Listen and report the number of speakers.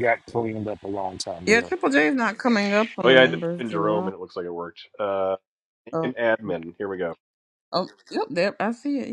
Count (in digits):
3